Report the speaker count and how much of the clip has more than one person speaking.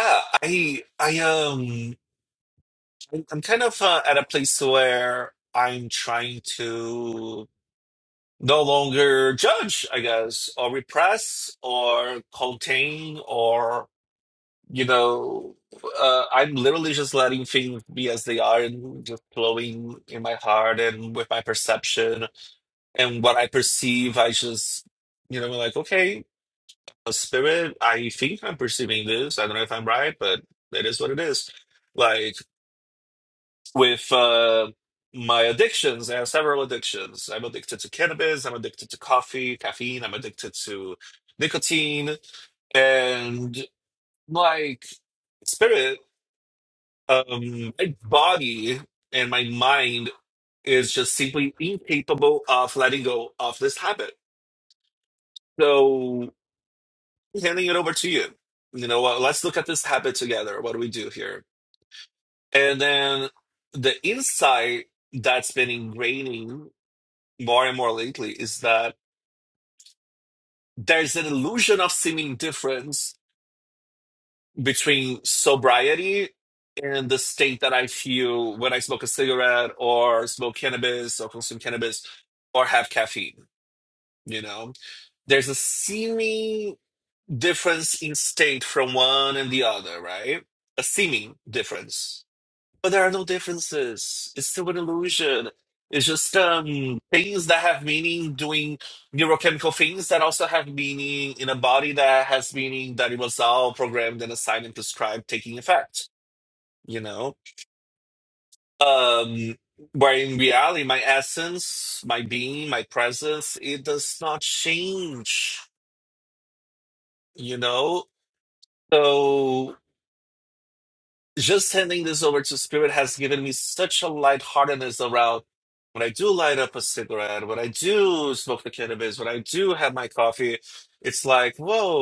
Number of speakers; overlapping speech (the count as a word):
one, no overlap